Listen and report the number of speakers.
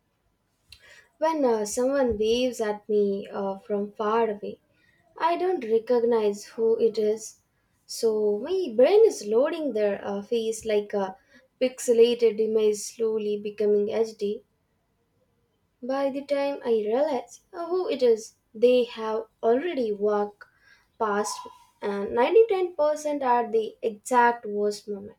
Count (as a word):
one